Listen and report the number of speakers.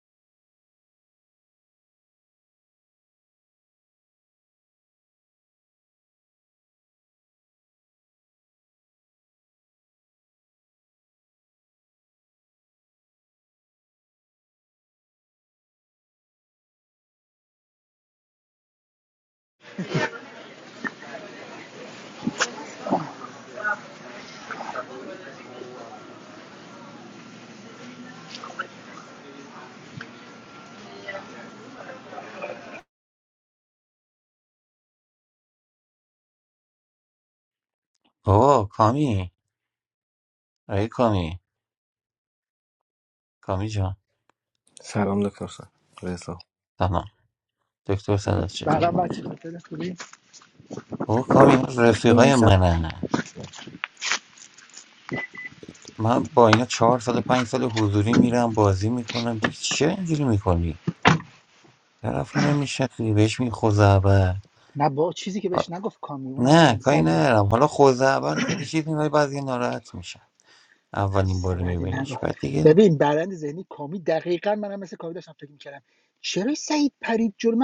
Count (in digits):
3